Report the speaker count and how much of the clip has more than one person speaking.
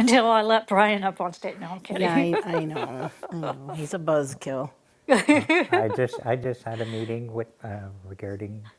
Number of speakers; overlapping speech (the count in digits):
3, about 8%